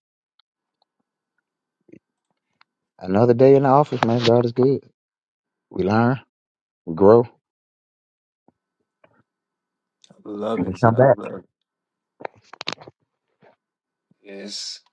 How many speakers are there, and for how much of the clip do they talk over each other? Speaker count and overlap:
two, about 4%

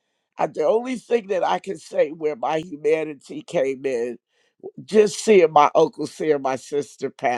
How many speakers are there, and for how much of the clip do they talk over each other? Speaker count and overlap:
one, no overlap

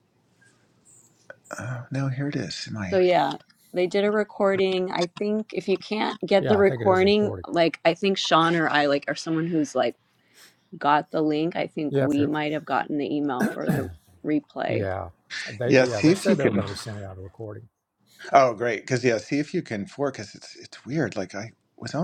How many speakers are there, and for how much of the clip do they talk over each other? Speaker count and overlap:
three, about 12%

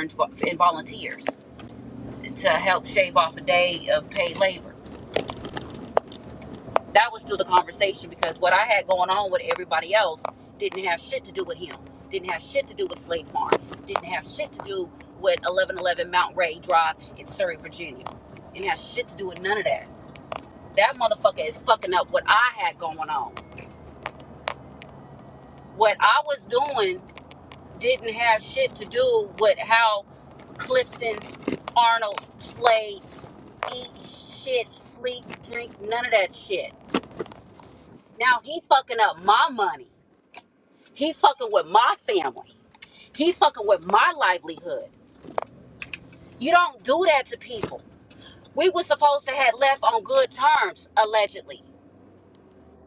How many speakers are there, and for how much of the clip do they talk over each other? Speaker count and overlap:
one, no overlap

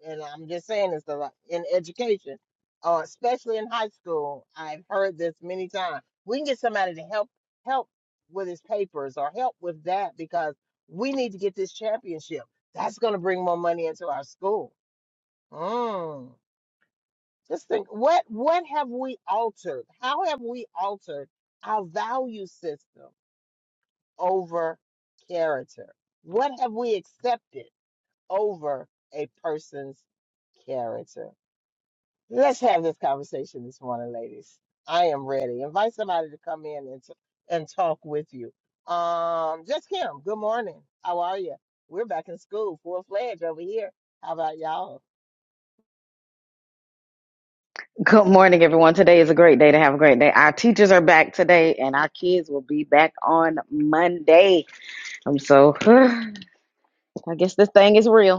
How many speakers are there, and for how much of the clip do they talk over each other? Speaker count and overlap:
two, no overlap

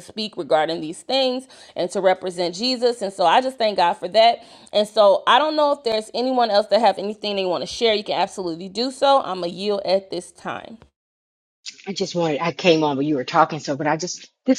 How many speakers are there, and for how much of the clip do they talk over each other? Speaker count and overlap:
two, no overlap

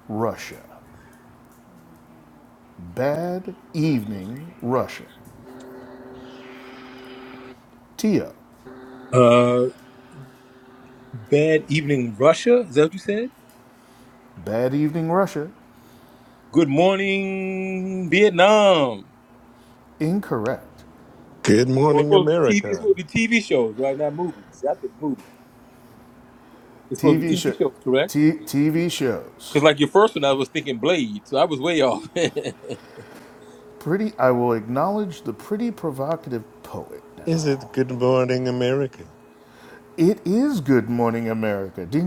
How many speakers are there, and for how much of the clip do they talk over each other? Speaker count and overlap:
three, about 4%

